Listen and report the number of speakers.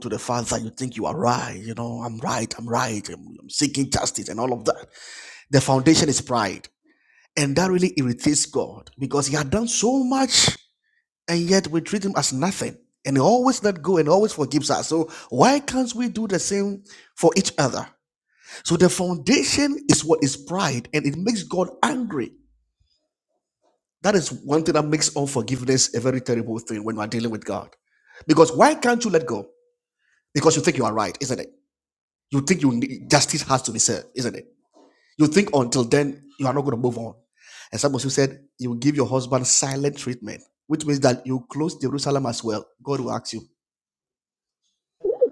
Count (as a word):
one